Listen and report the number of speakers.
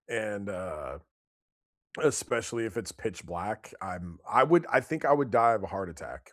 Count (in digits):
1